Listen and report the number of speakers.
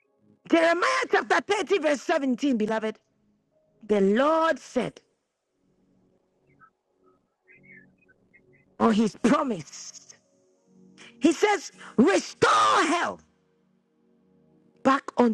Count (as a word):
one